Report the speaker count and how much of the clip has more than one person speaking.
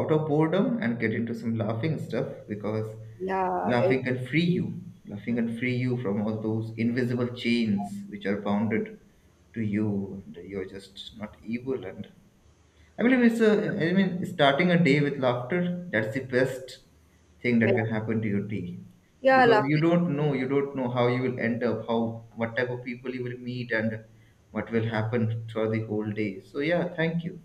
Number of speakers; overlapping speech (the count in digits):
2, about 3%